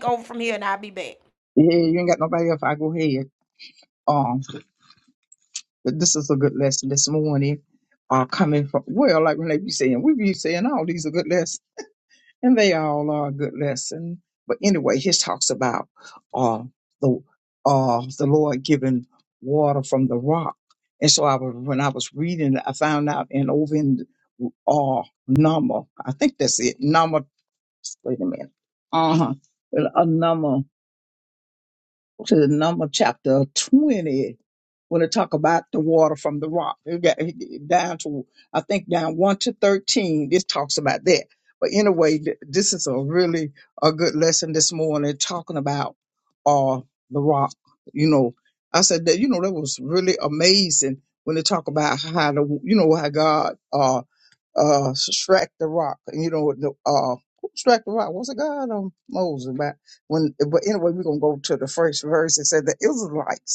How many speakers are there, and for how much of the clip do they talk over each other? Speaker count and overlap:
two, no overlap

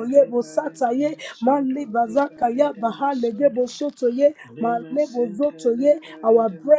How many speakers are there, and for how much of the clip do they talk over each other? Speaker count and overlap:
two, about 80%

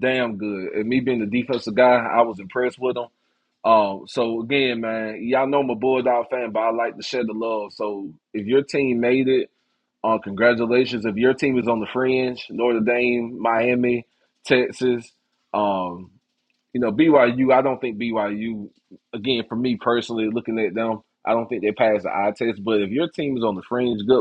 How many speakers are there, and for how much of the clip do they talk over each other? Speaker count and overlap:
one, no overlap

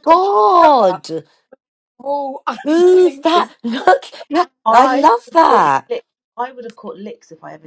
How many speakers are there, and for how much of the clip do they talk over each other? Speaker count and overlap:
three, about 28%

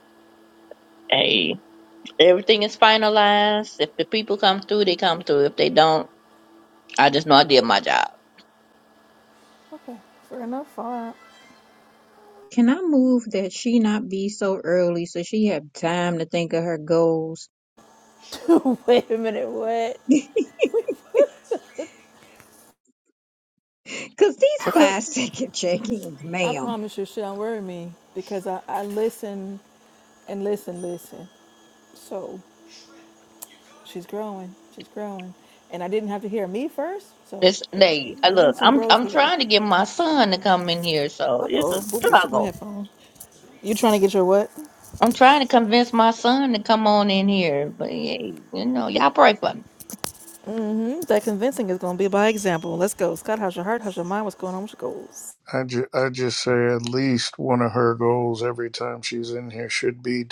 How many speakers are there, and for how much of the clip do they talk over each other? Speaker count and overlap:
four, about 6%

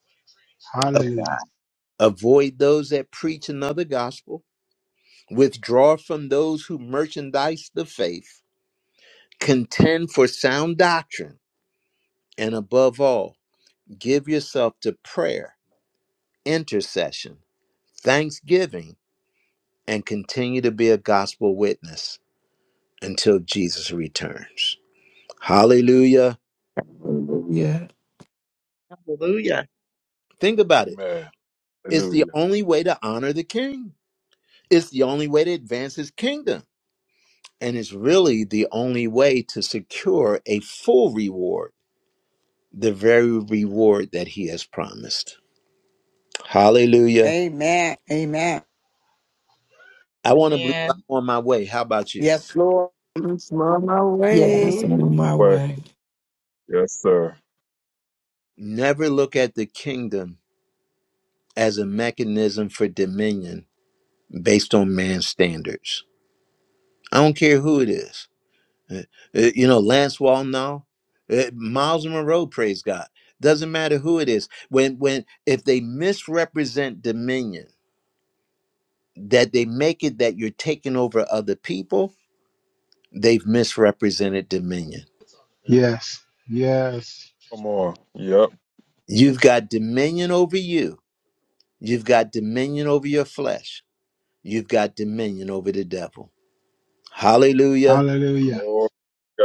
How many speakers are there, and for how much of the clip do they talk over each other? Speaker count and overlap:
seven, about 3%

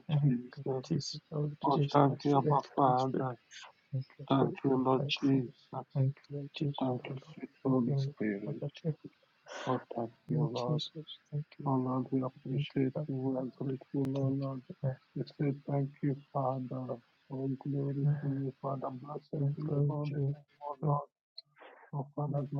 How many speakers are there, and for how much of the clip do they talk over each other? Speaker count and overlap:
two, about 29%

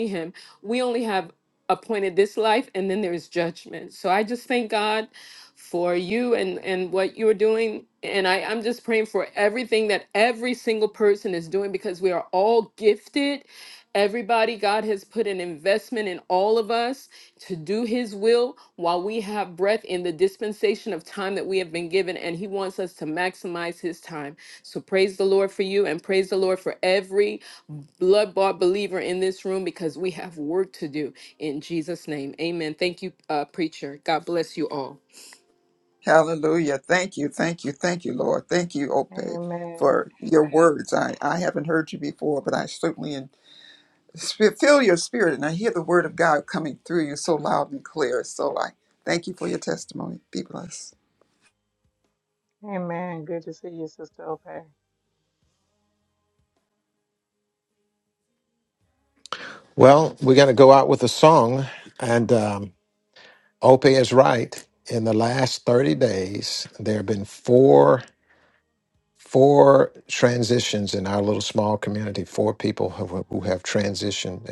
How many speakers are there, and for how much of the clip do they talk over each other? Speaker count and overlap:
four, under 1%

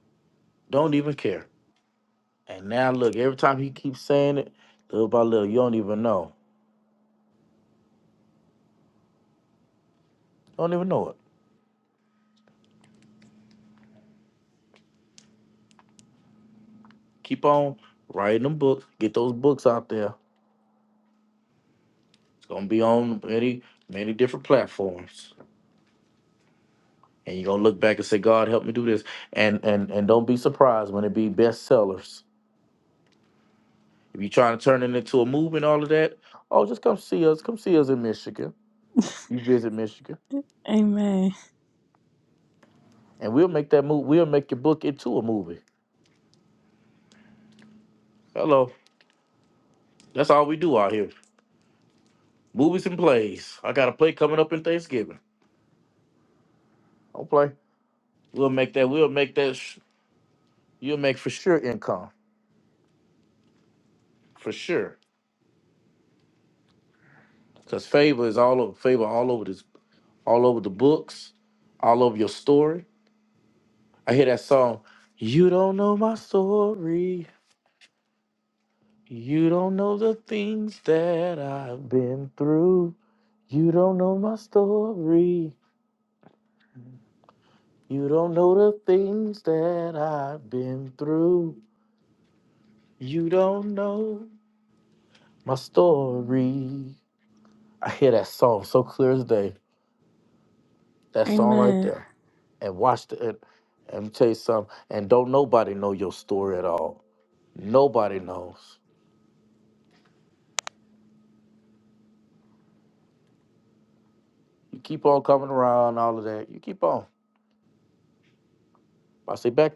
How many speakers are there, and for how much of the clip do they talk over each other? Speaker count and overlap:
two, about 1%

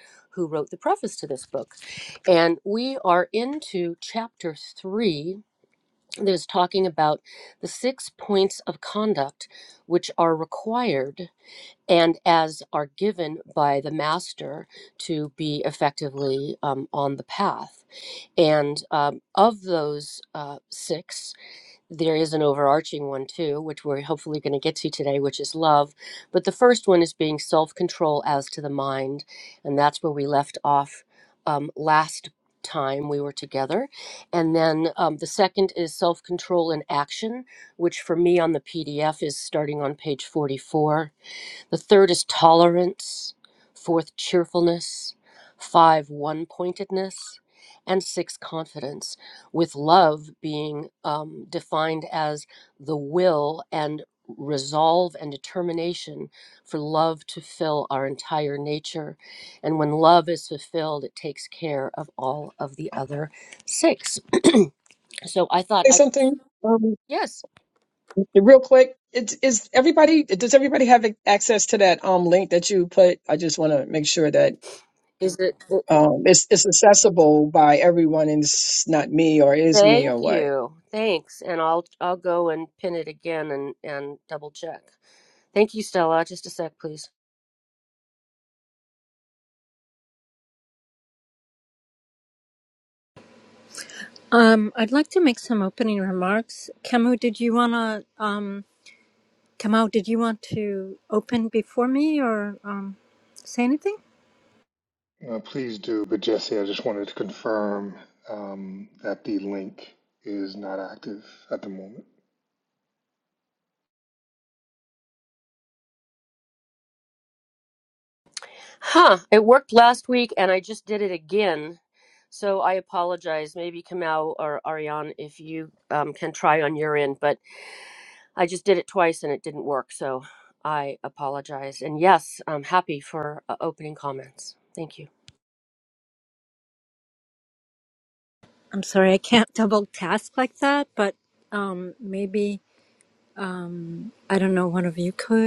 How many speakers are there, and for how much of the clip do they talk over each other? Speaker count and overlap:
four, about 1%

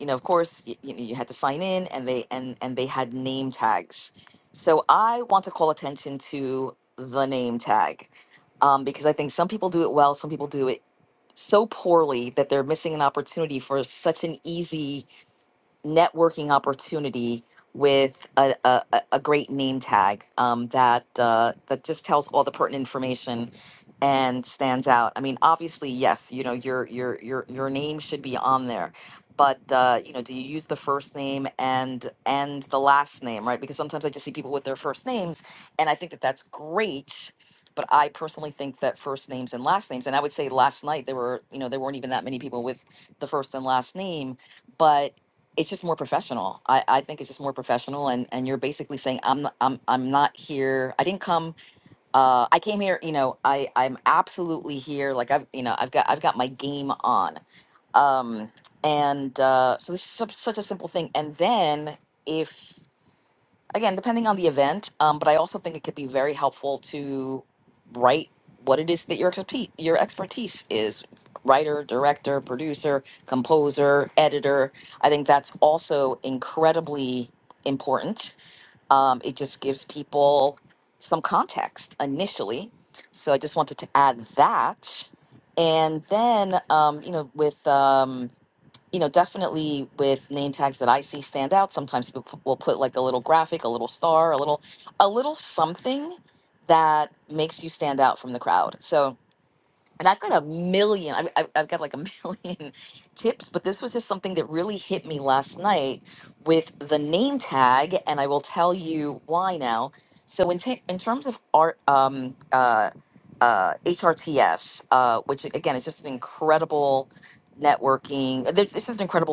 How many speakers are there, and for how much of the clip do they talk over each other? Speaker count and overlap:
one, no overlap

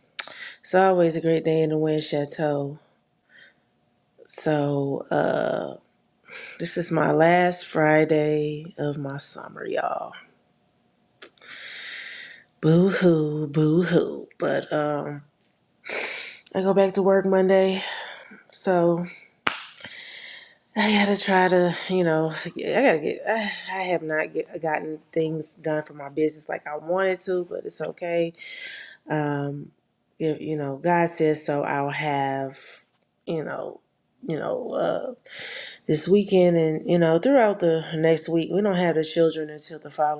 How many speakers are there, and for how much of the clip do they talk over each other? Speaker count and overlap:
one, no overlap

